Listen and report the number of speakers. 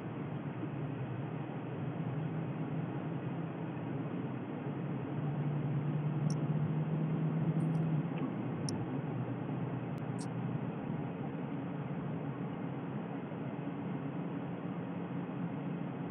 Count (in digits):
0